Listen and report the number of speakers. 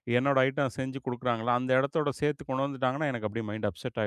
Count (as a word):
one